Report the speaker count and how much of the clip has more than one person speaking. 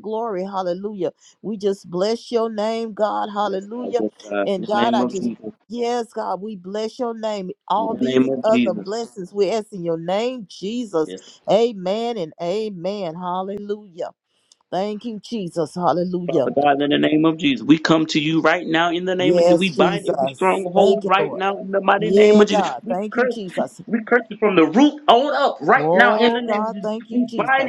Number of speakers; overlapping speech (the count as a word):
two, about 28%